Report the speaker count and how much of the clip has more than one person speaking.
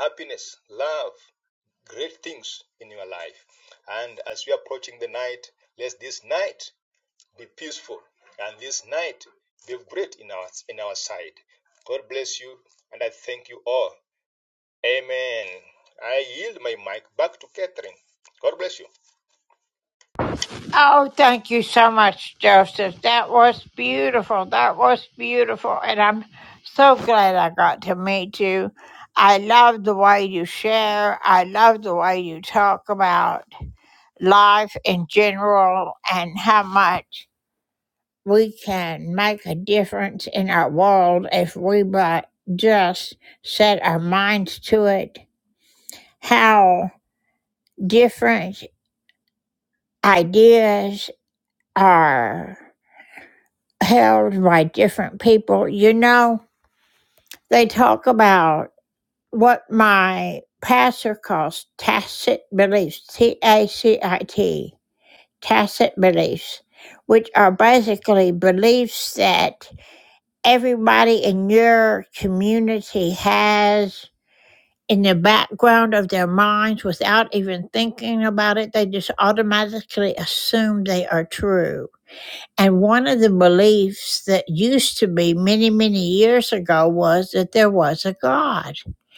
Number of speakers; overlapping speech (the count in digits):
2, no overlap